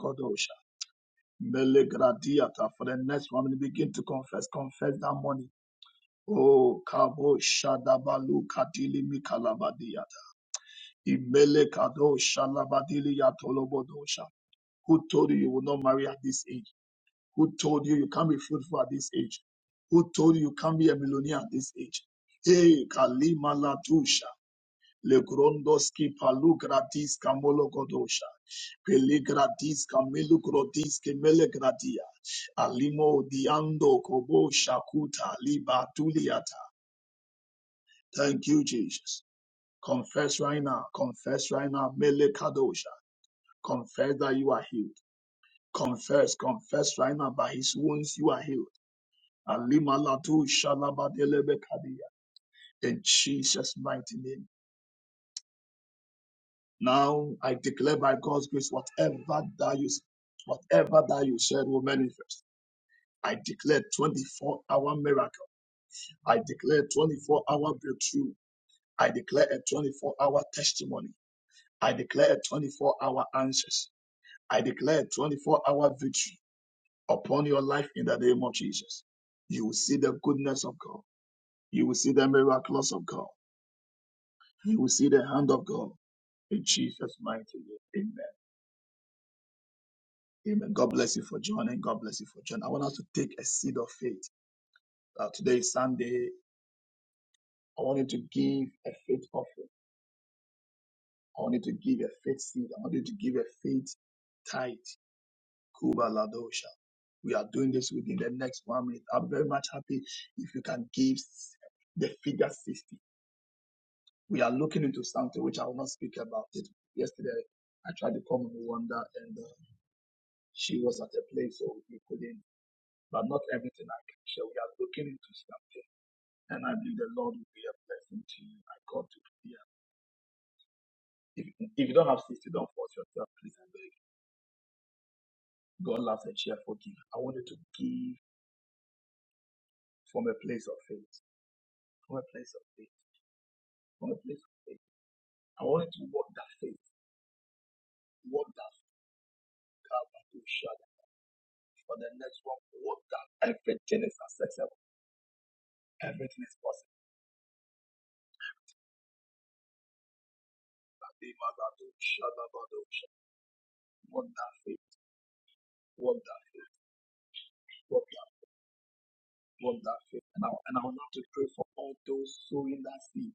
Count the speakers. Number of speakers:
1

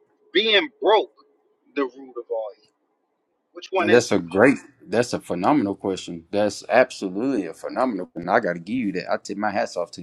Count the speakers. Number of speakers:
2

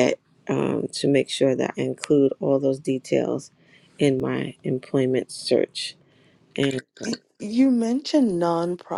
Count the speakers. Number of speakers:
2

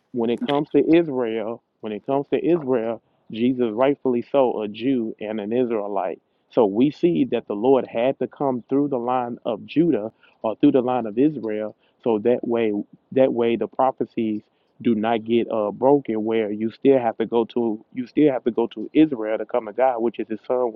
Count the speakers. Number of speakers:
1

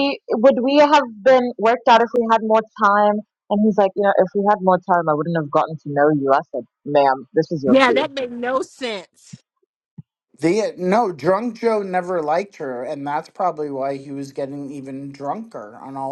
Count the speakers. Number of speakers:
3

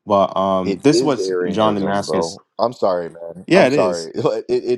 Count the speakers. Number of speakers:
2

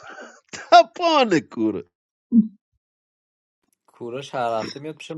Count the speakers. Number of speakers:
2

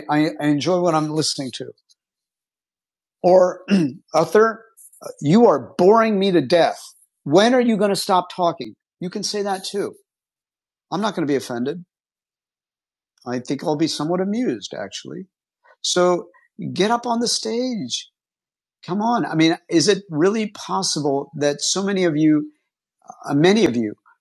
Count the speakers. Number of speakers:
1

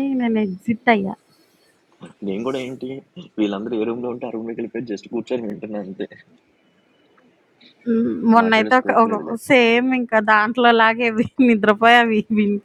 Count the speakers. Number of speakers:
2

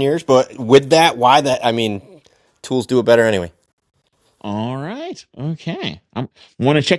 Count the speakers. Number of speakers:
2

